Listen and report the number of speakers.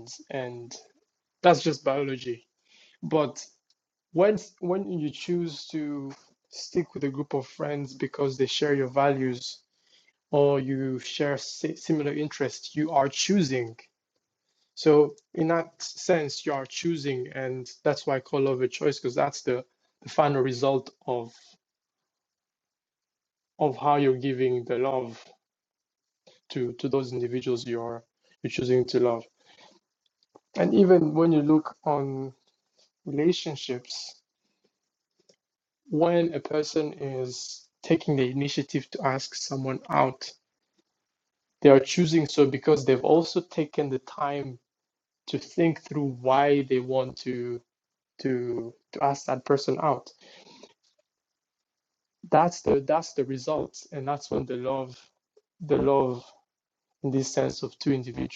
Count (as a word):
one